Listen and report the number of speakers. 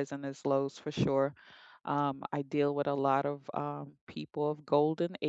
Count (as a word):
one